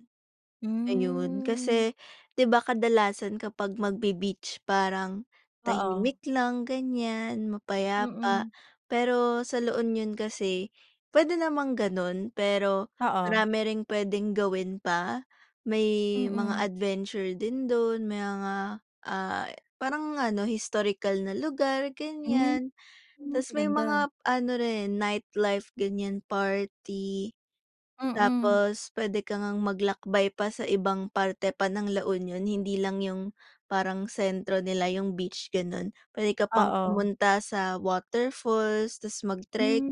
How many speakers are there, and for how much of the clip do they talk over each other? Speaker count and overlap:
two, about 11%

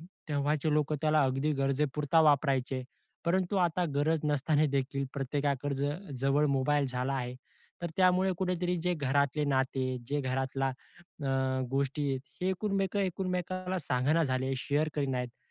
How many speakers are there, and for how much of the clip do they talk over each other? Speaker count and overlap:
one, no overlap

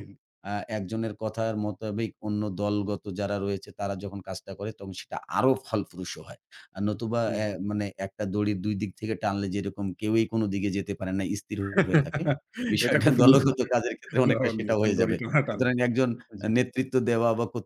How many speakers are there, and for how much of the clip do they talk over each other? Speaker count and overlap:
two, about 16%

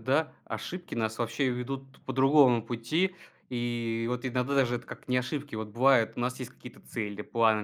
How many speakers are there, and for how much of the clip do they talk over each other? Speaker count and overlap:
one, no overlap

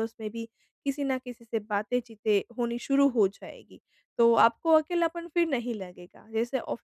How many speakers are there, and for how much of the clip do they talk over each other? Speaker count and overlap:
one, no overlap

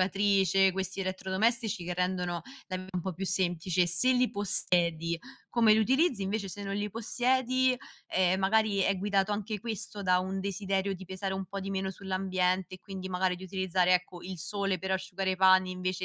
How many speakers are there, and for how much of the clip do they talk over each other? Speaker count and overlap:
one, no overlap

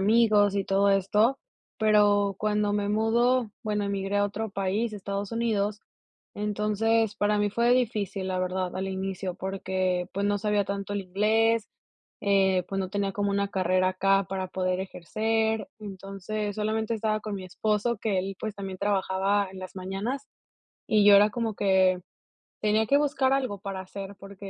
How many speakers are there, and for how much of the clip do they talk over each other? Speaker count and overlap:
one, no overlap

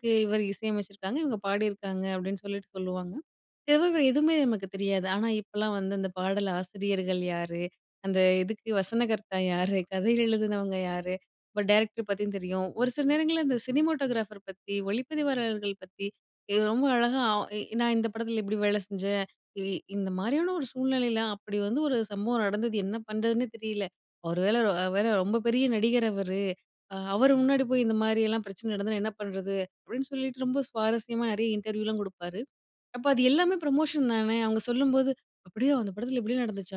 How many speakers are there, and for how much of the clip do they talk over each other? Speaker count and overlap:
one, no overlap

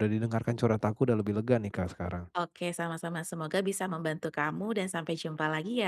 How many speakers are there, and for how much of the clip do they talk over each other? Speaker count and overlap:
two, no overlap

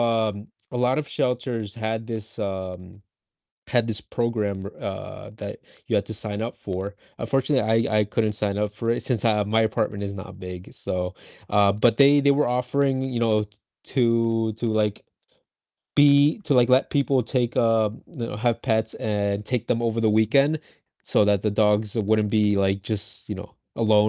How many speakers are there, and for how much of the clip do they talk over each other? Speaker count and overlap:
one, no overlap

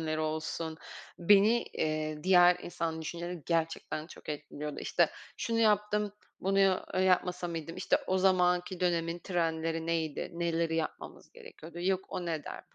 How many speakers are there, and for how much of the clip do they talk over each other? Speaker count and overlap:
one, no overlap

